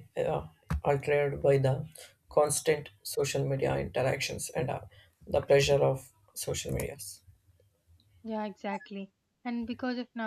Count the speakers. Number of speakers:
two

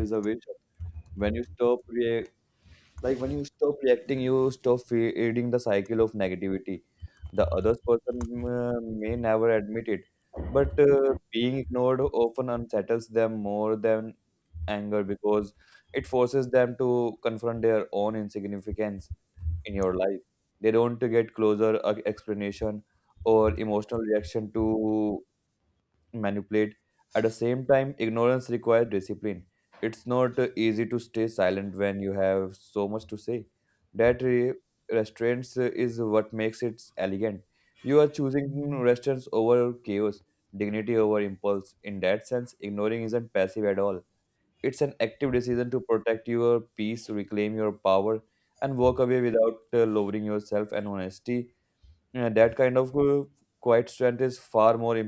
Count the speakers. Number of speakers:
one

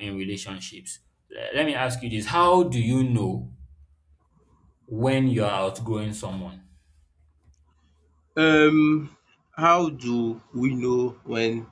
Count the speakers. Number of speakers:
two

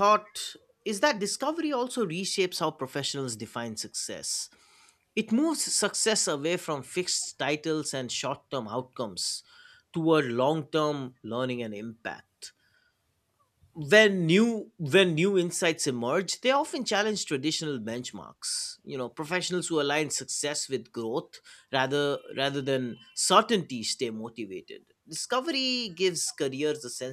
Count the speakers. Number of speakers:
one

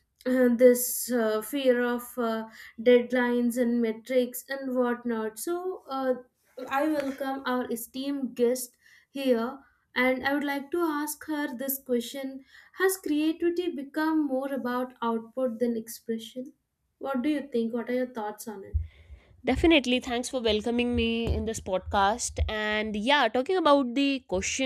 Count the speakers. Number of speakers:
two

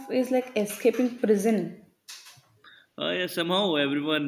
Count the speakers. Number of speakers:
two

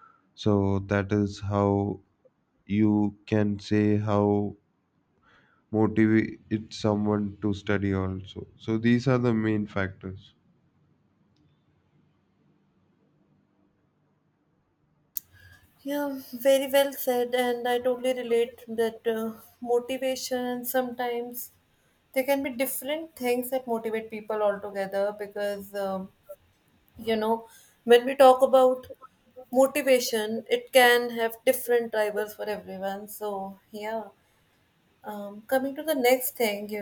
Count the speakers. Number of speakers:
two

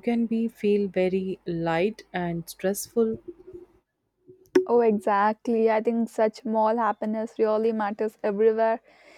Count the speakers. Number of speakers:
two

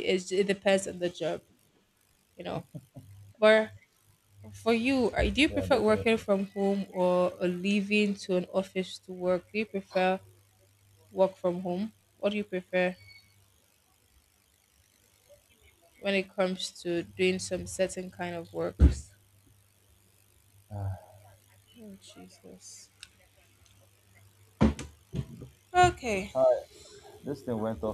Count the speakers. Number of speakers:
two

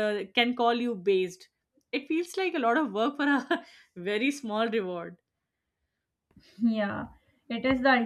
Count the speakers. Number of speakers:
two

